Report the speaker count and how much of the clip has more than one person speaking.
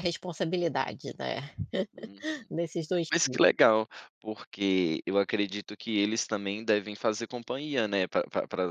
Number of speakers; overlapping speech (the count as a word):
two, no overlap